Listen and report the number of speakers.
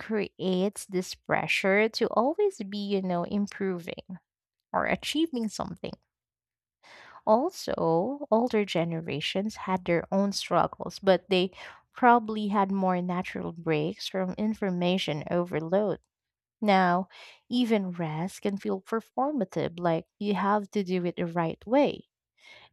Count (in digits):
1